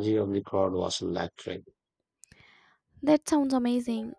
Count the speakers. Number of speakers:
two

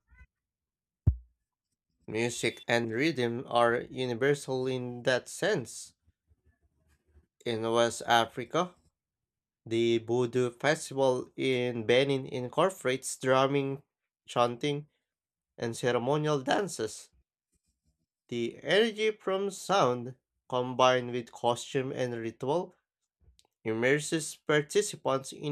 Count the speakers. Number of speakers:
one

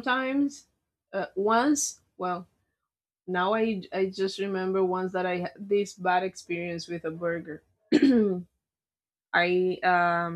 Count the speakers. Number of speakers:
one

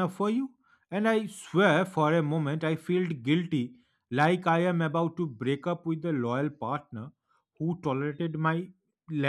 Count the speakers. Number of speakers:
one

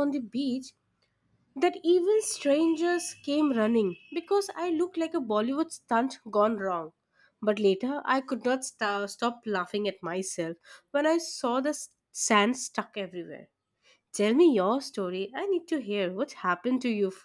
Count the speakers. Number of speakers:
one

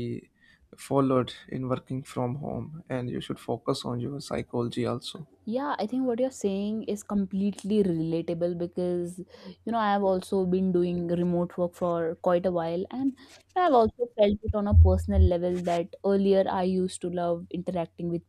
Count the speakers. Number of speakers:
two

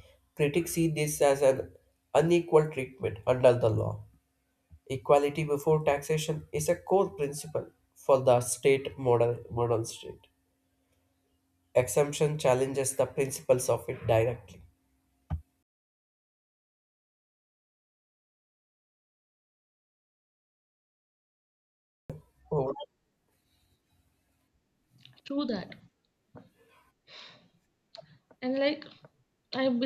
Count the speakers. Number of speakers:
two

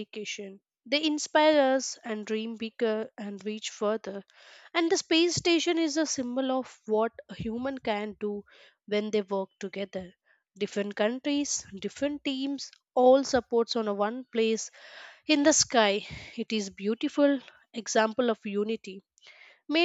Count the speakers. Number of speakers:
one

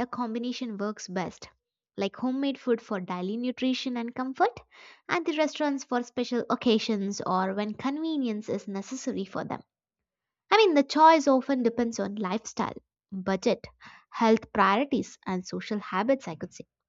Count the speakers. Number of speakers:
one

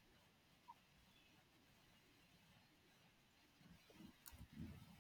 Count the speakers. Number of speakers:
zero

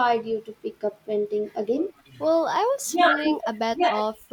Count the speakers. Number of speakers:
two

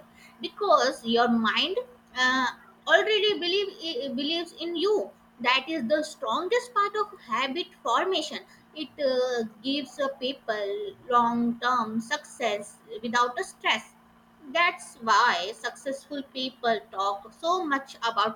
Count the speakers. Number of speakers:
one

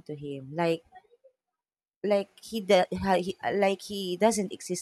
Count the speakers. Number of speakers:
one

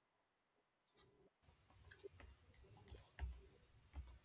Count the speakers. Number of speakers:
zero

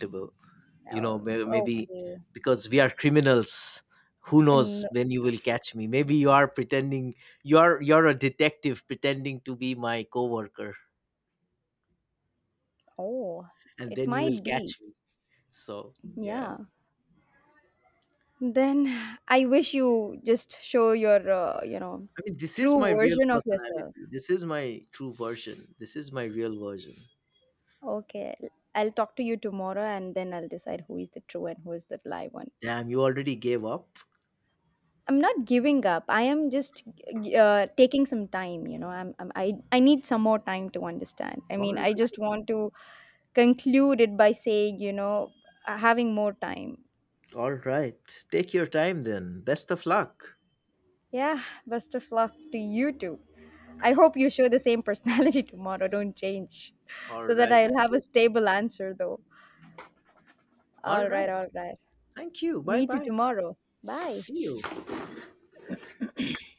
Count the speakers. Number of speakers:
two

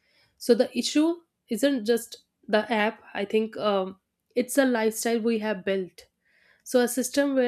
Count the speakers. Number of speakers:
one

